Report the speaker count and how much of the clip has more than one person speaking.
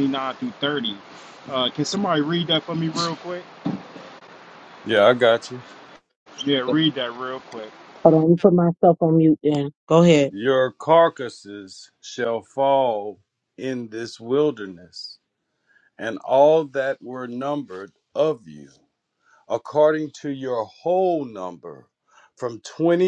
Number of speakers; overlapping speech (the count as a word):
three, no overlap